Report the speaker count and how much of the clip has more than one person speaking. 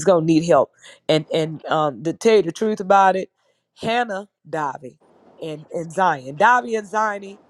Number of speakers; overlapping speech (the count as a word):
one, no overlap